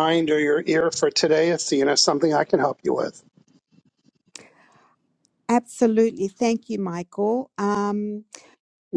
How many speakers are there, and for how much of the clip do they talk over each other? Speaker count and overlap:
two, under 1%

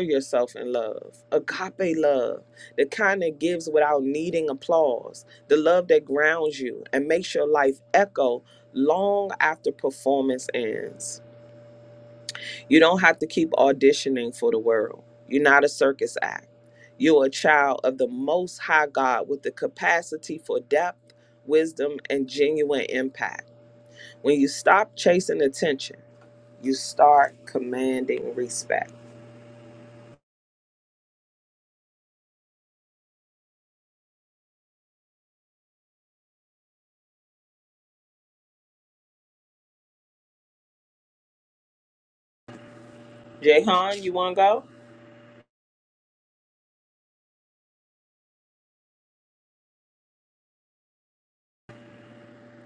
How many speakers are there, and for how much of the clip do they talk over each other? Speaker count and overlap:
one, no overlap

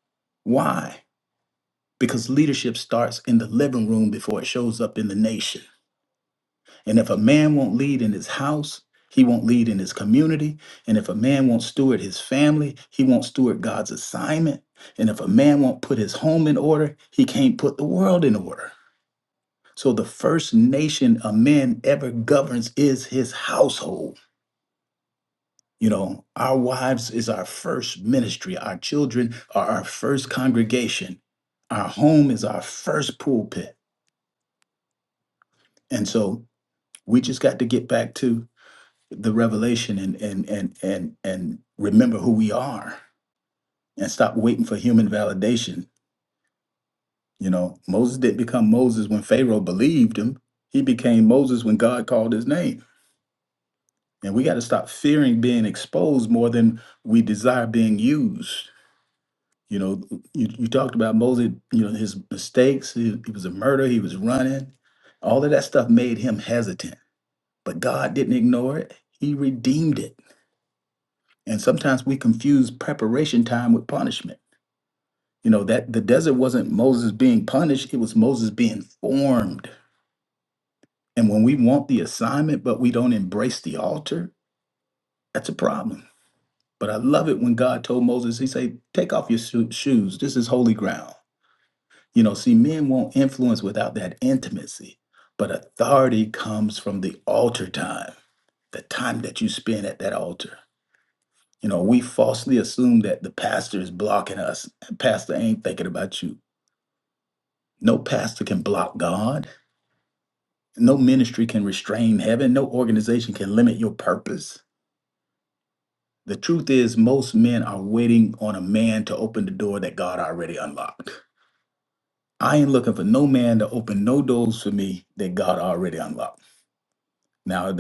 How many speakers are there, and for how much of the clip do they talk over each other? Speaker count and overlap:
one, no overlap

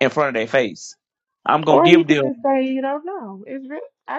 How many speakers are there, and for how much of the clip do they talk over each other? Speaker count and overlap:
two, about 16%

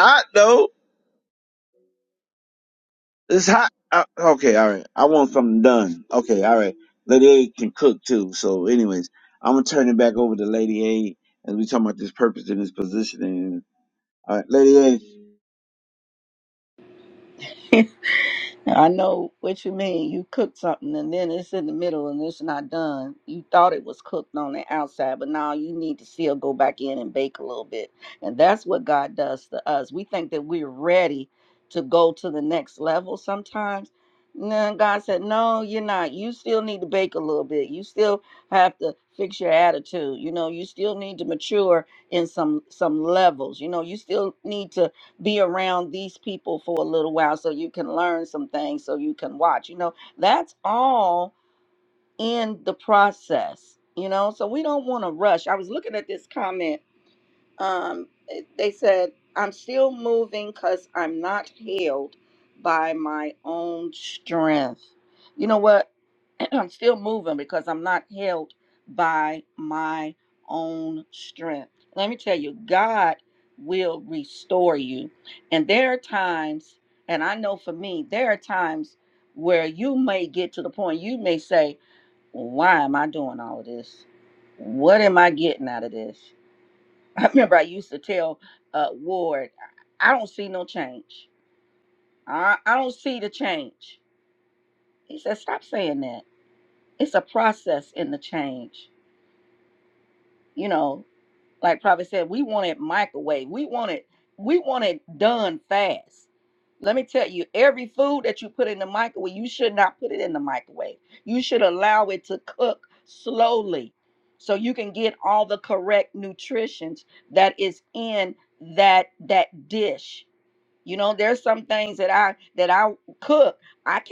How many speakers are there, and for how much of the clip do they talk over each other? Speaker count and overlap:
two, no overlap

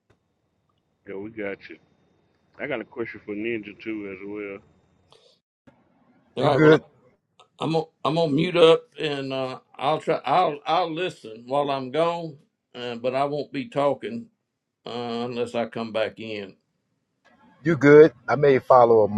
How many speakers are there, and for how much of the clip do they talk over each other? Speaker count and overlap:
three, about 2%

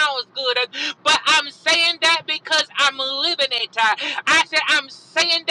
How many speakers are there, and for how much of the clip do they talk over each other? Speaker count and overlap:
one, no overlap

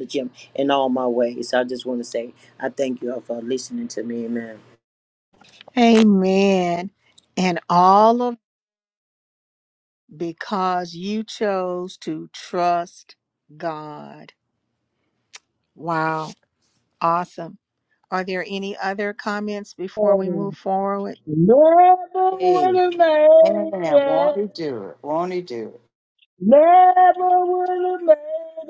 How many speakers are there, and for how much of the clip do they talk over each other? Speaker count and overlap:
four, about 5%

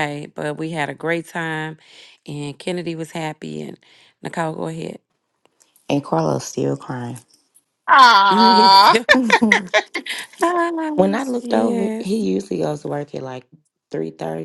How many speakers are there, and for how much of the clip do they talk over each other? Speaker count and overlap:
three, about 12%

